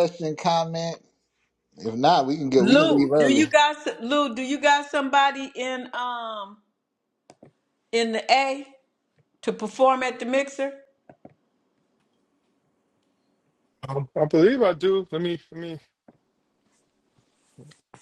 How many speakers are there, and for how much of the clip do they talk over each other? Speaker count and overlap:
3, about 5%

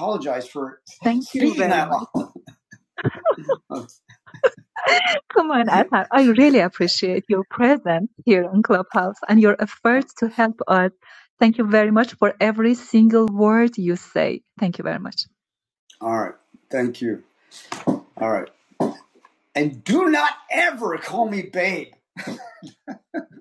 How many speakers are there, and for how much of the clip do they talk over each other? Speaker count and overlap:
2, about 3%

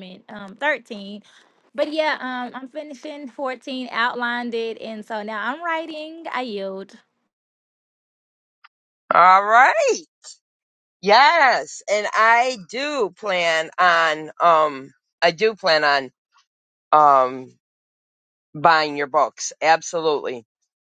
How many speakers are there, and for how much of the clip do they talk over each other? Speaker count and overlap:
2, no overlap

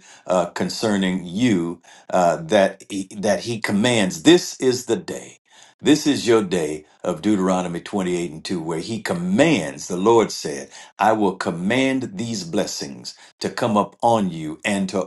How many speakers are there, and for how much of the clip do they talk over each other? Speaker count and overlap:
1, no overlap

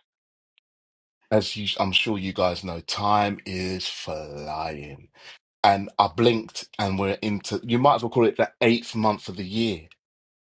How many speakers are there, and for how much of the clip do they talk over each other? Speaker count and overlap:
1, no overlap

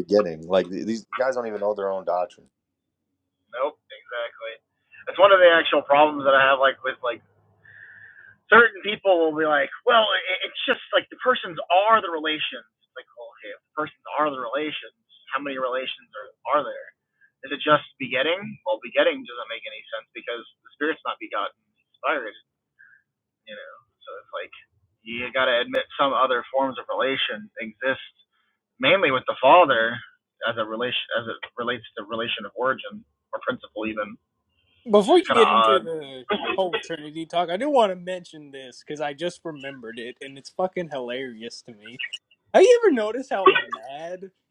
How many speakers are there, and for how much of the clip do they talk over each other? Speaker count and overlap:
3, about 2%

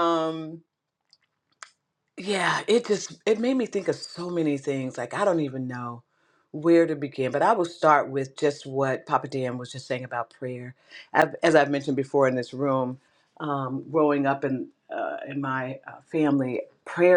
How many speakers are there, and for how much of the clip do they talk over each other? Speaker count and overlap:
1, no overlap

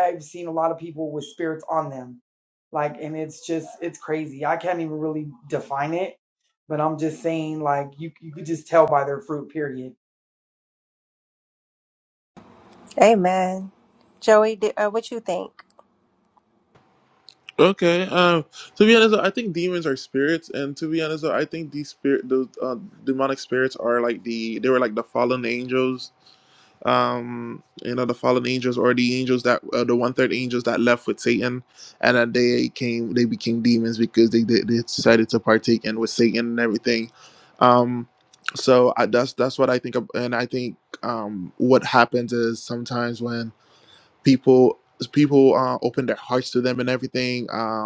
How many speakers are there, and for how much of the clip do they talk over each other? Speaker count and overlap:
3, no overlap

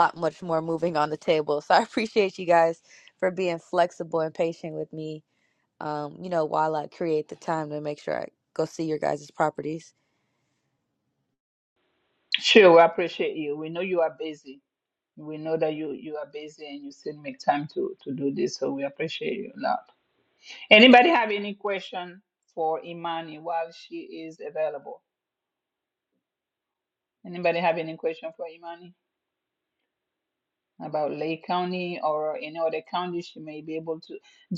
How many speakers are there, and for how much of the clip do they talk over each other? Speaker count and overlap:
2, no overlap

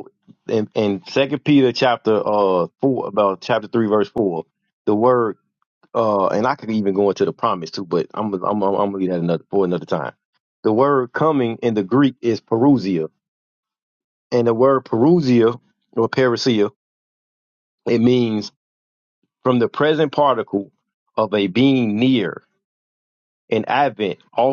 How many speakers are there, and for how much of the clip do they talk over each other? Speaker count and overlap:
1, no overlap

